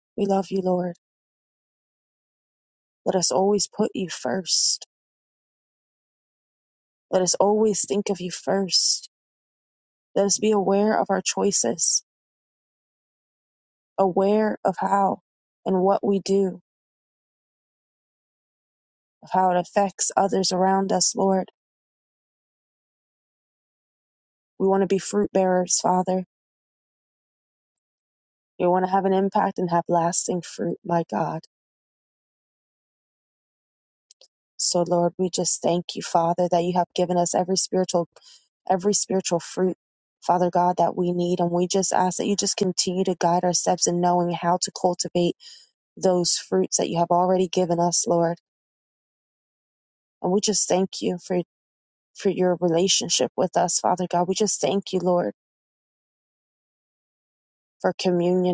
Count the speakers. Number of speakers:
1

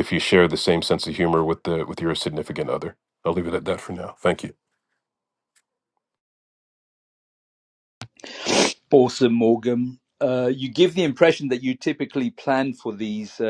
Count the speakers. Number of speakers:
2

